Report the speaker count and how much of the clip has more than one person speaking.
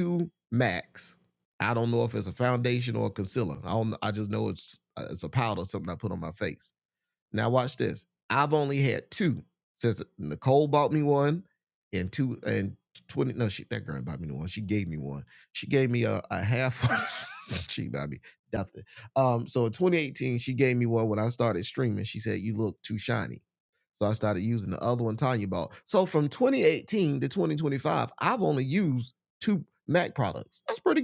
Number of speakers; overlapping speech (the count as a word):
one, no overlap